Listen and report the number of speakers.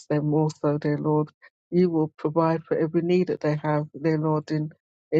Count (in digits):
1